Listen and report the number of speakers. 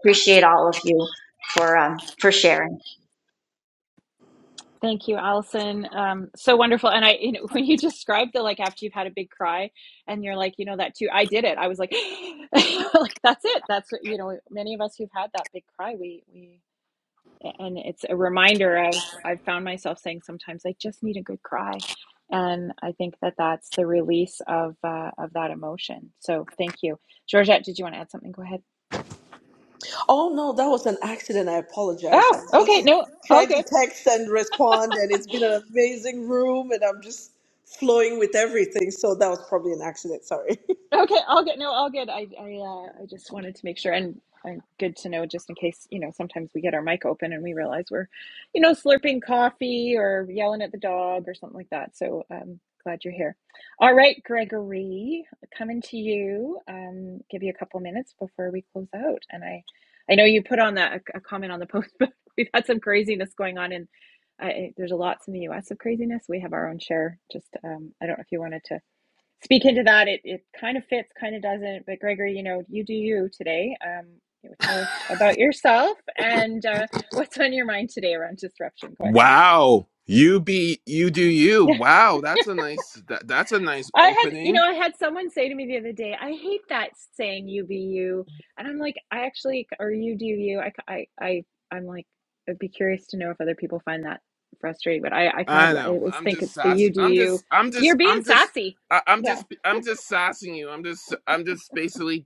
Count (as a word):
four